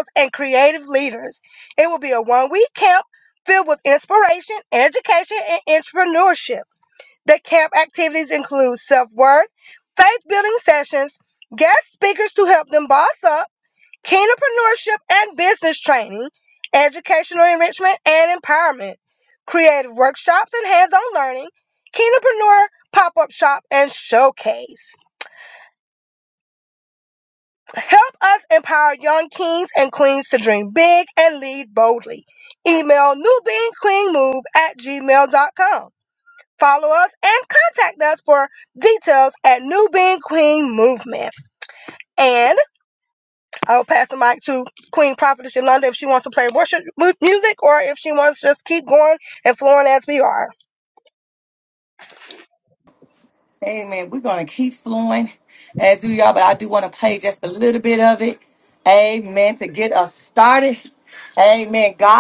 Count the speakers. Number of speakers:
2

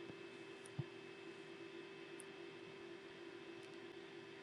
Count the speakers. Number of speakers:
0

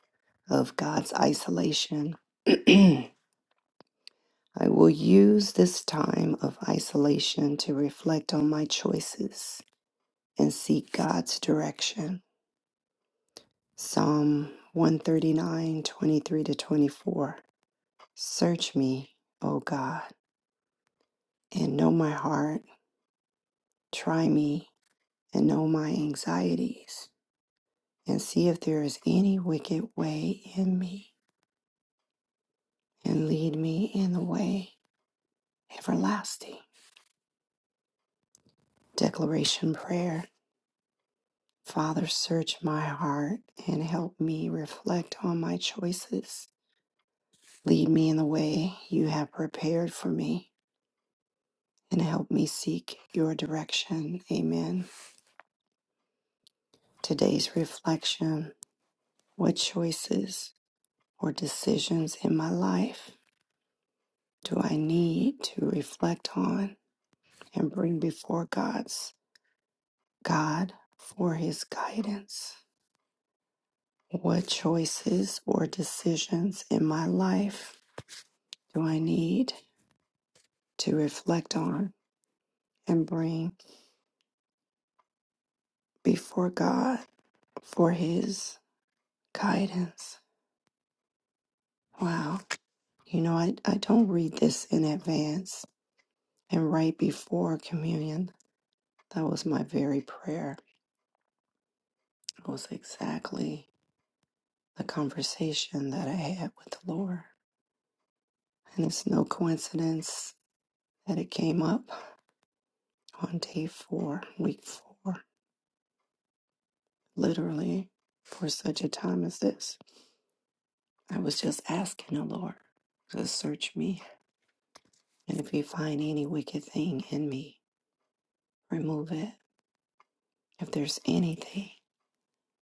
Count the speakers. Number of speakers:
1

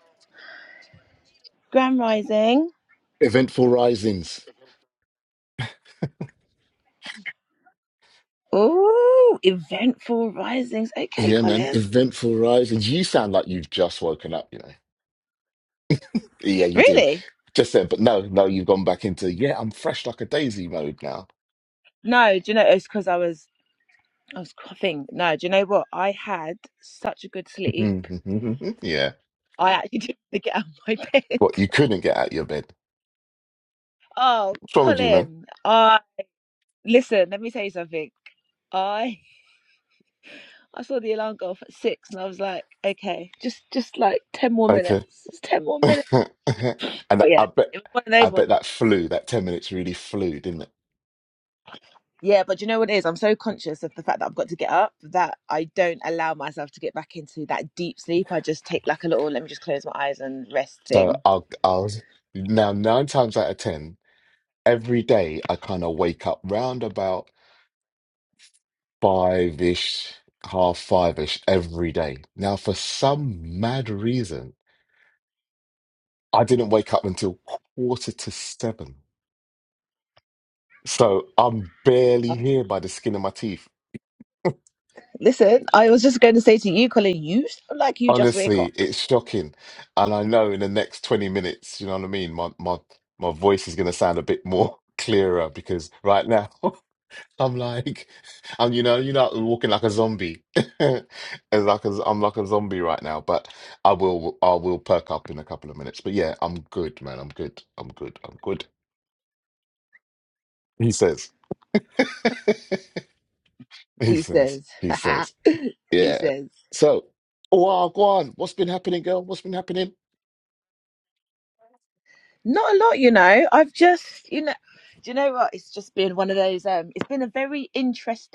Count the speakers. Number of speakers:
2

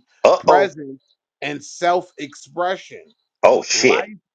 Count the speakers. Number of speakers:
2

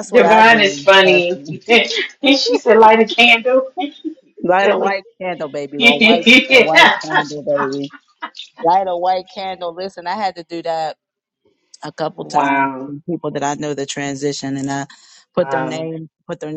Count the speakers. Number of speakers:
2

